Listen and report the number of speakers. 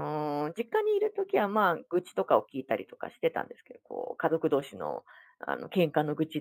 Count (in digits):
1